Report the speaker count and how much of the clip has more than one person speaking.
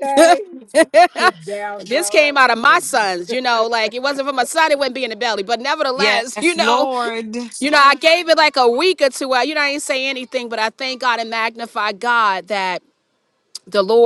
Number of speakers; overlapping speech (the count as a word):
three, about 14%